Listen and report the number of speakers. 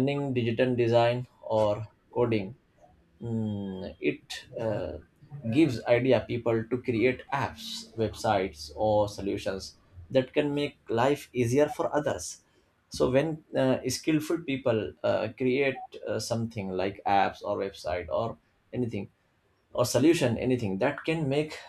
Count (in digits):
1